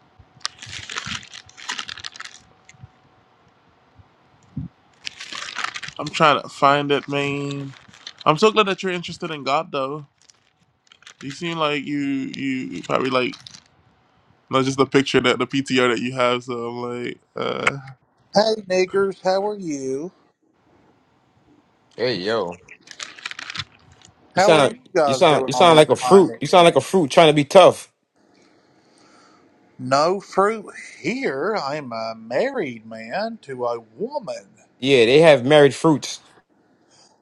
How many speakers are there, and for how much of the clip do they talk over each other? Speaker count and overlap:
3, about 6%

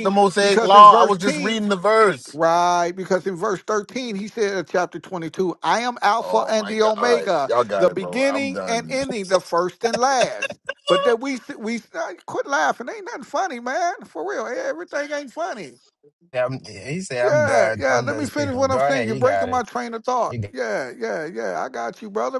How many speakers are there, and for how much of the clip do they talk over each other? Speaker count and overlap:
3, about 30%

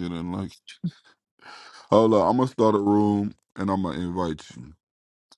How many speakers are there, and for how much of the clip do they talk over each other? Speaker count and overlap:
1, no overlap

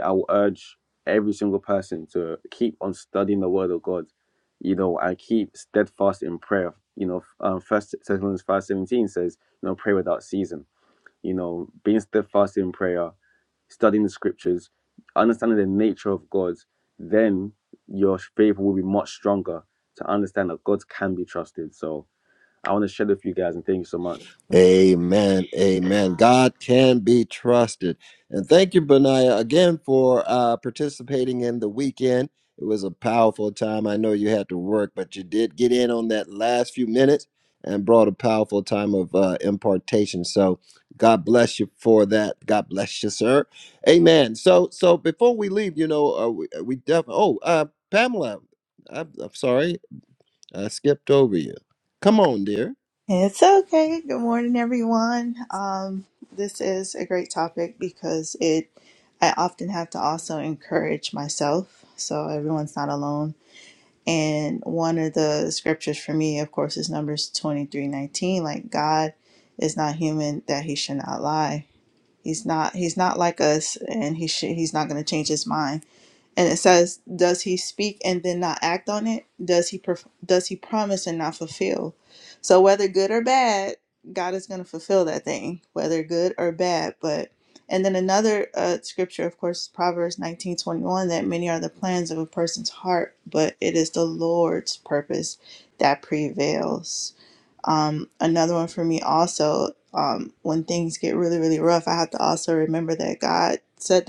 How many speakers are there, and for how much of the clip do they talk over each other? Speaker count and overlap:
3, no overlap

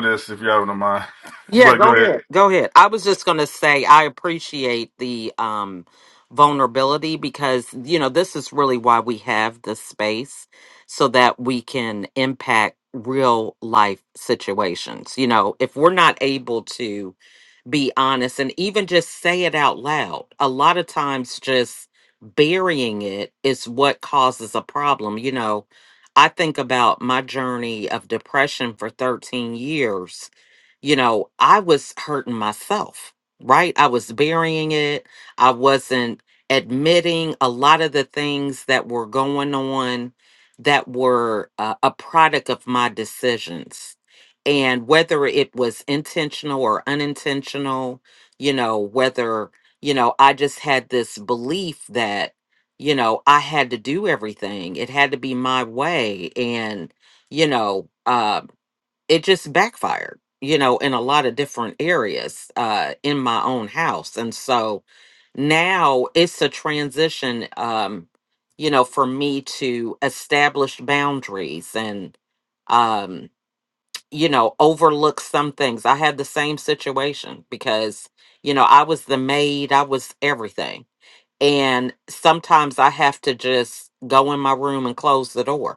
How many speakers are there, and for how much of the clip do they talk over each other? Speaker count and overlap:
2, about 1%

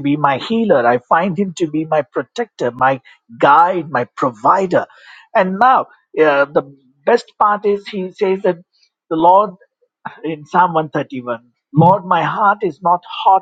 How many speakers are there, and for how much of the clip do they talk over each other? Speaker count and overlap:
1, no overlap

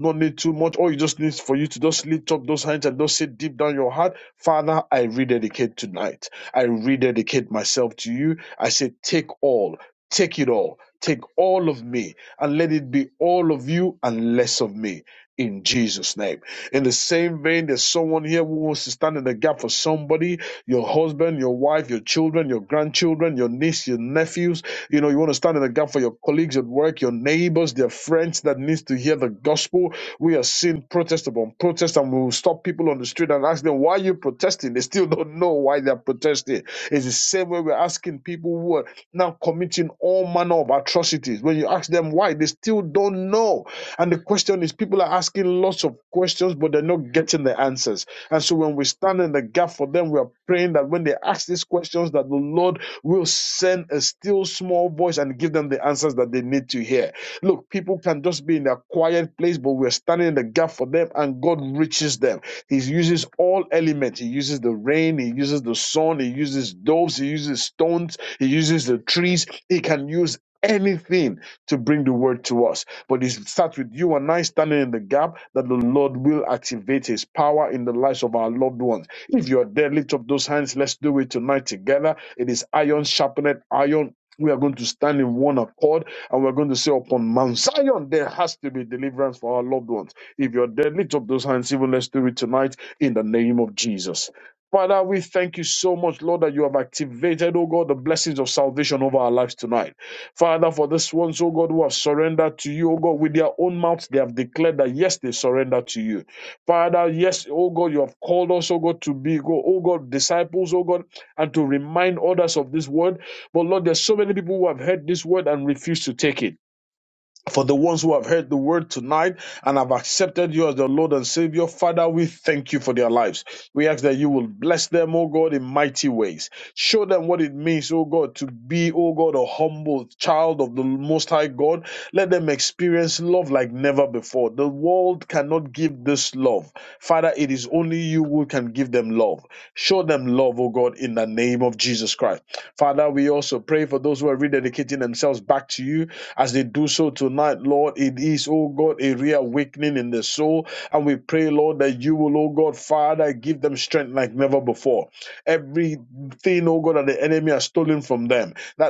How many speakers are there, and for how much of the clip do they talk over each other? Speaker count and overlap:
1, no overlap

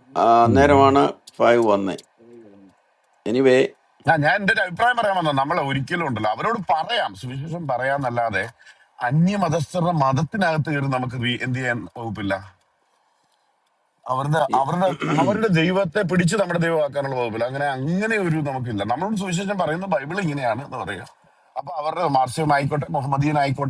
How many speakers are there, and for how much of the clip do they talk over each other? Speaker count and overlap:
2, about 1%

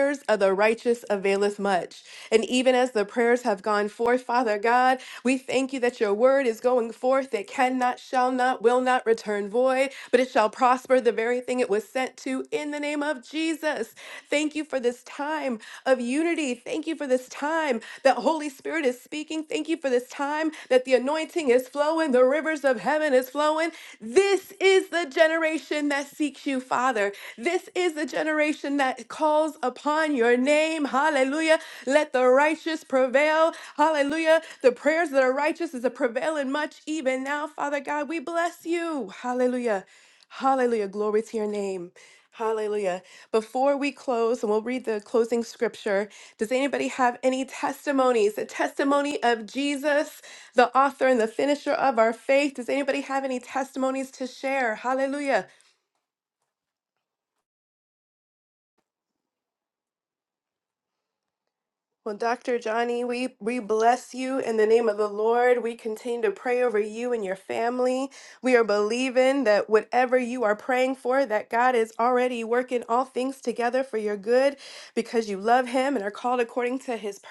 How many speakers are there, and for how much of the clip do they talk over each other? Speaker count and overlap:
1, no overlap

